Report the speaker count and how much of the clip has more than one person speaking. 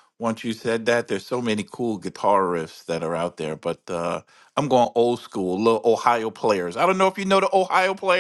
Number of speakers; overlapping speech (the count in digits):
1, no overlap